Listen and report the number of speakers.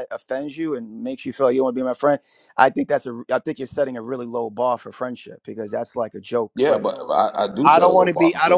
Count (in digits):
2